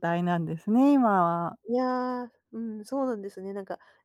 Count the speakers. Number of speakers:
two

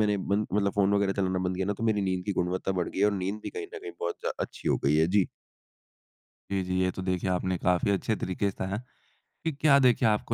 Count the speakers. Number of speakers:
two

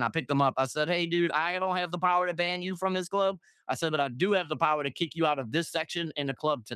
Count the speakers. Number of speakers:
one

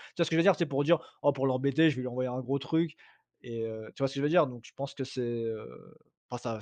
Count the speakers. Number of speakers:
one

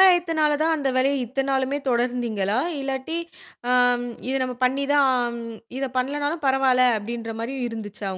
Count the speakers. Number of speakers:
one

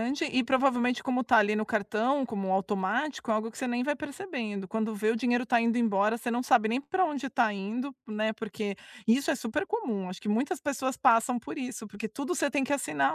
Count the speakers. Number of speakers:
one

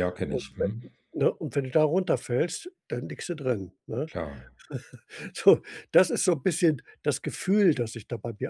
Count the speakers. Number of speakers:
two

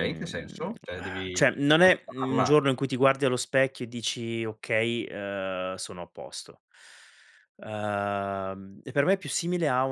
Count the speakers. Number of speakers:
two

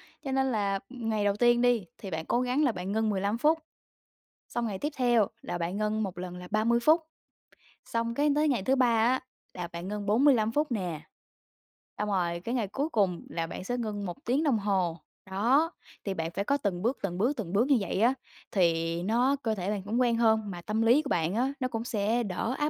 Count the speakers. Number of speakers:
one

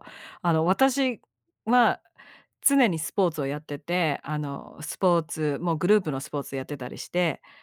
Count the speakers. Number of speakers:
one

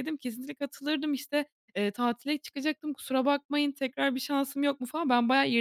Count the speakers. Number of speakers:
one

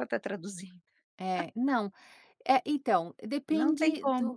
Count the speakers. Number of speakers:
two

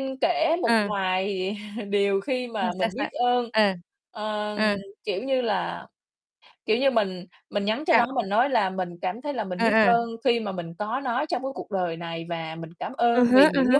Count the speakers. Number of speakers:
two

